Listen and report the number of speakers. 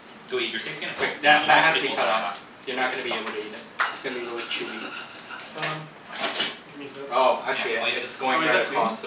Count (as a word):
three